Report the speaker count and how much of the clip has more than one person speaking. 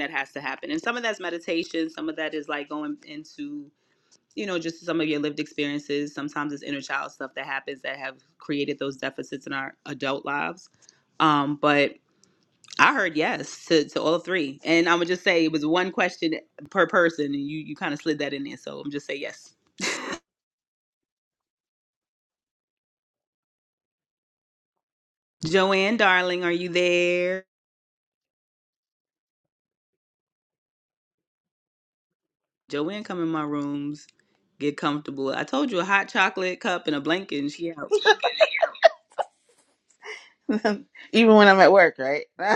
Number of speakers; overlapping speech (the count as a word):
two, no overlap